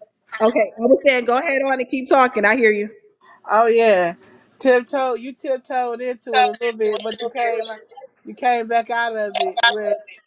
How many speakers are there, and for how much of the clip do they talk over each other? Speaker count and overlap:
2, no overlap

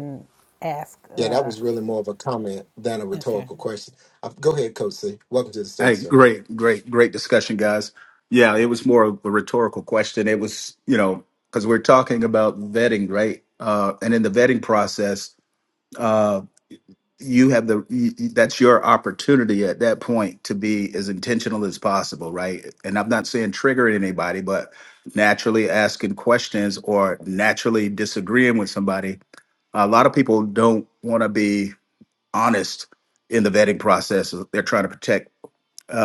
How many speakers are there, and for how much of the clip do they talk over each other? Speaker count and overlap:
3, about 3%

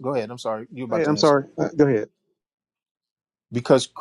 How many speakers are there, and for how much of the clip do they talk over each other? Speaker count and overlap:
2, about 11%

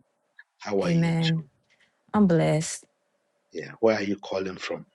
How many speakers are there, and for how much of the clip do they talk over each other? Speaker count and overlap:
2, about 11%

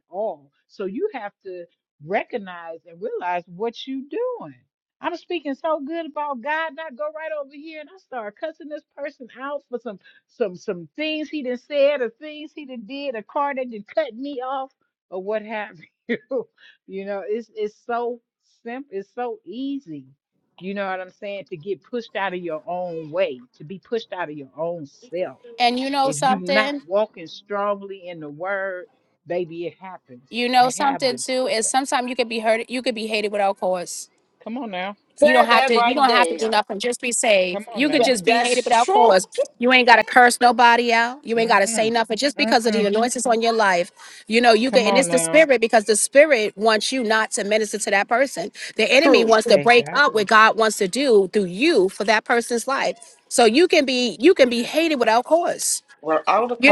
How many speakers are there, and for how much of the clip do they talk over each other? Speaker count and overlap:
3, about 14%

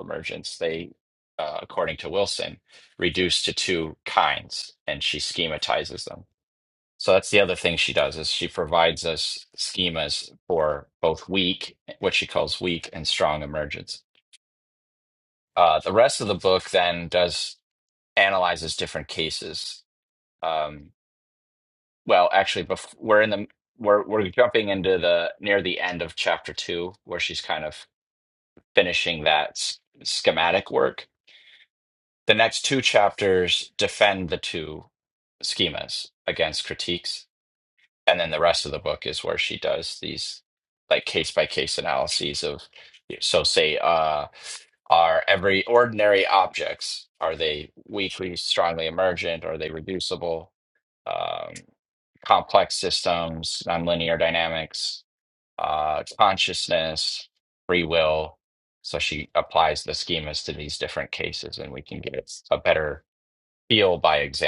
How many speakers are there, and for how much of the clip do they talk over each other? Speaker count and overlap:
1, no overlap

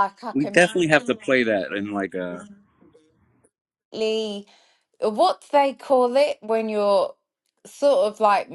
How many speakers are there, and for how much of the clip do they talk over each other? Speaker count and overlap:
2, about 3%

